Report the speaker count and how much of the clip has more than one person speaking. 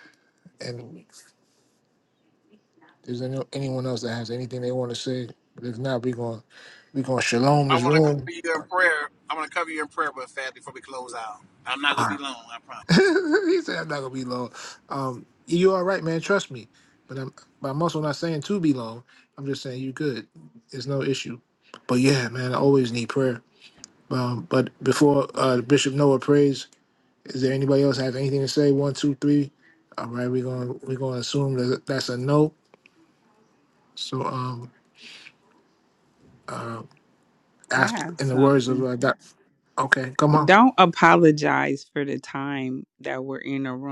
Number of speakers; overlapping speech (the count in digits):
3, about 4%